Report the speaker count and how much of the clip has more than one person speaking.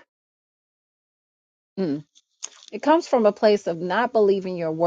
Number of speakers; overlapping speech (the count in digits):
1, no overlap